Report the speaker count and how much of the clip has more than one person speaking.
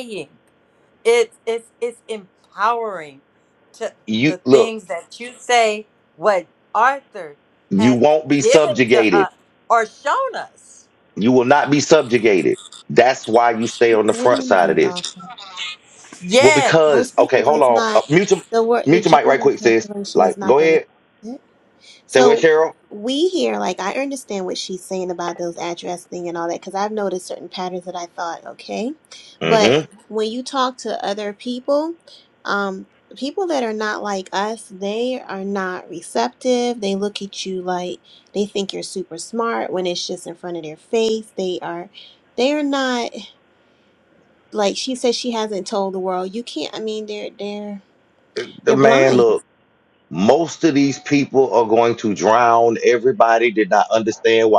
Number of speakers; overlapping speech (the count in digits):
3, about 13%